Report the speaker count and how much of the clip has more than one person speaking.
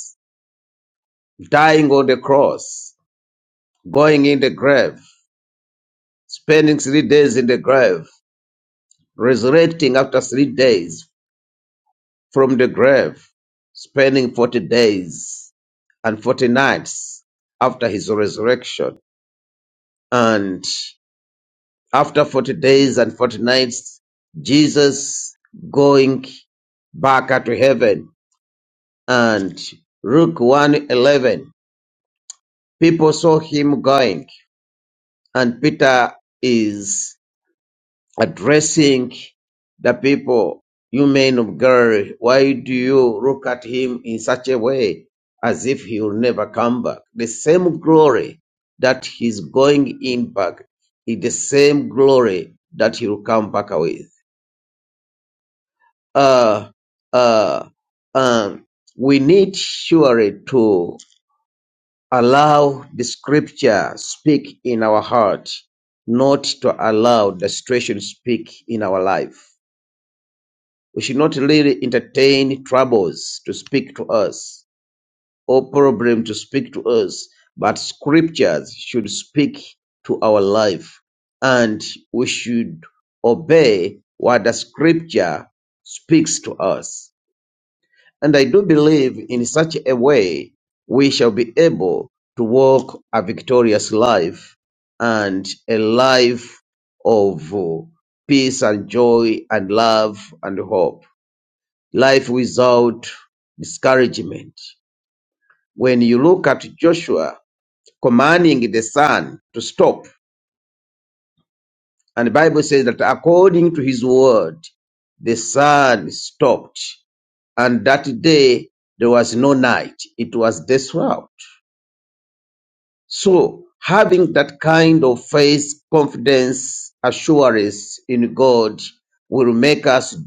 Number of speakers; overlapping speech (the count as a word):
one, no overlap